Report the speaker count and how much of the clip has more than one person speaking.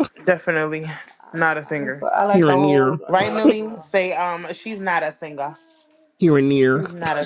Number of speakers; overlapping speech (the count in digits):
3, about 31%